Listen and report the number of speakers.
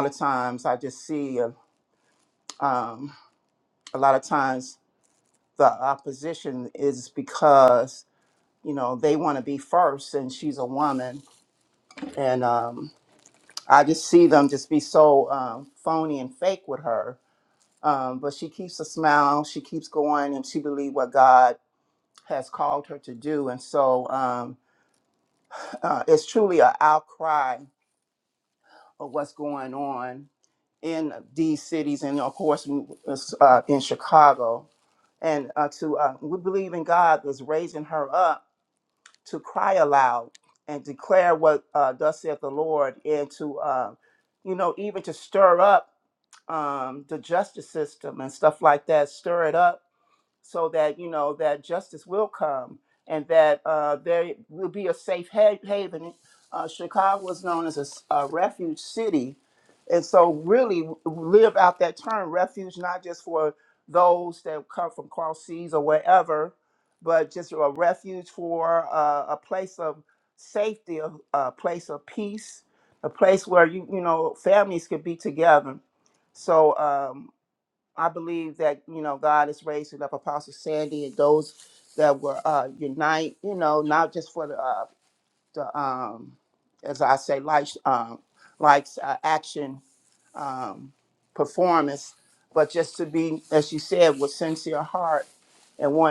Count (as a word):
one